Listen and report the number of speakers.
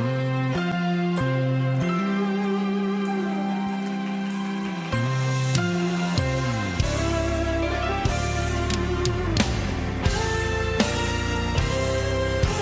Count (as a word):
zero